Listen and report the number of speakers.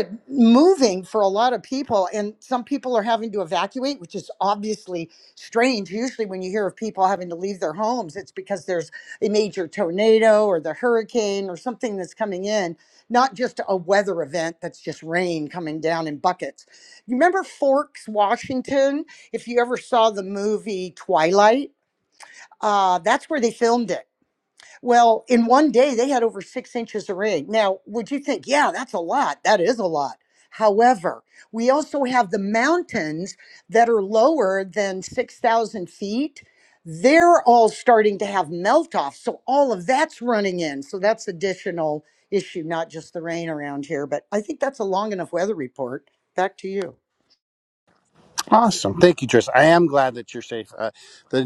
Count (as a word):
two